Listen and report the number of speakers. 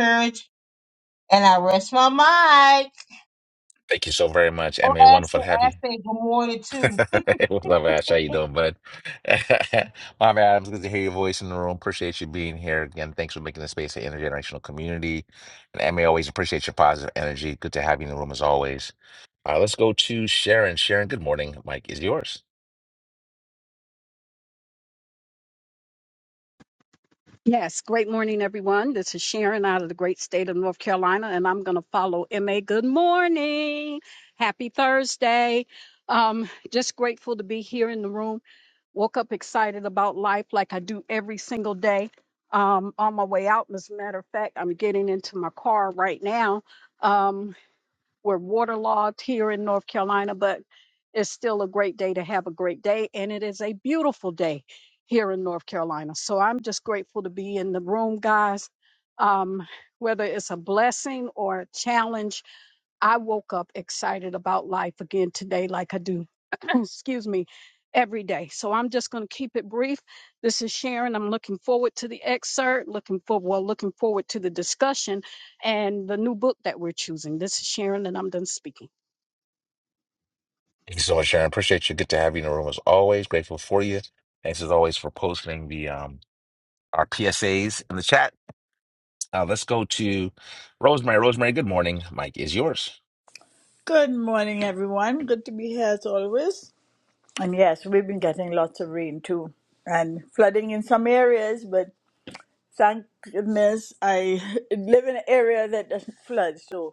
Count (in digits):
4